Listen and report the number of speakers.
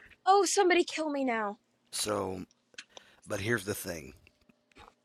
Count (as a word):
two